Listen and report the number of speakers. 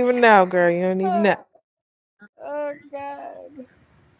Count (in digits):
2